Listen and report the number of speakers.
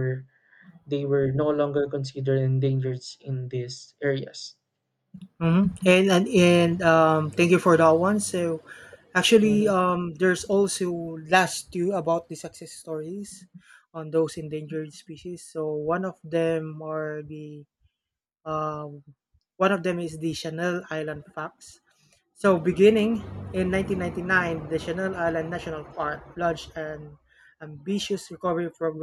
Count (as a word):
two